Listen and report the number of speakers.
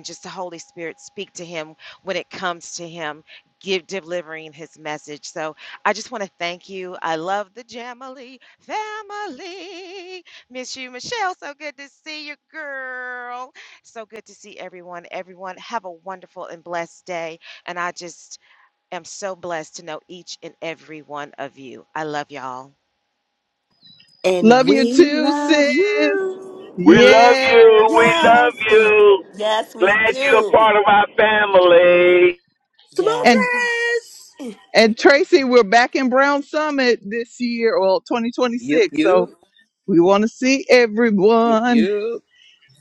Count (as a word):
five